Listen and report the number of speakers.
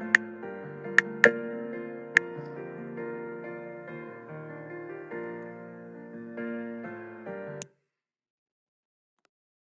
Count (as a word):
zero